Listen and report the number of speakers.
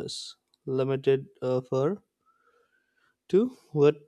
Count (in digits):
1